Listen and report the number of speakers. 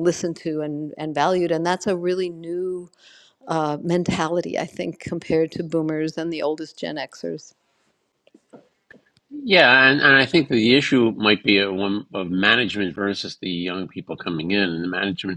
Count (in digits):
2